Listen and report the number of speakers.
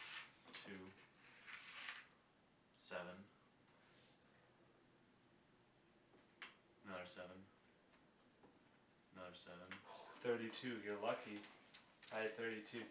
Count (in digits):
2